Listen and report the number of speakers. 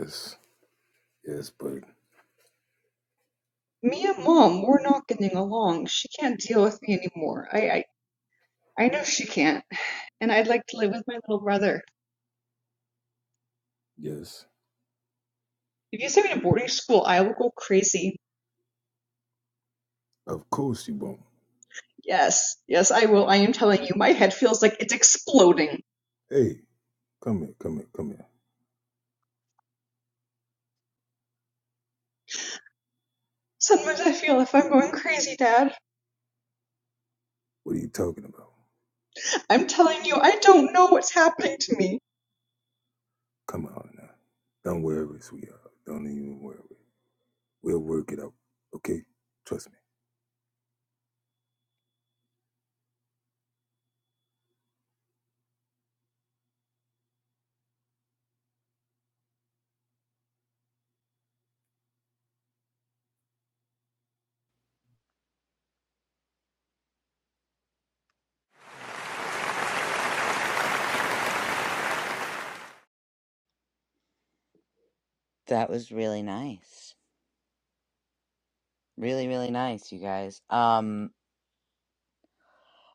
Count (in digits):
3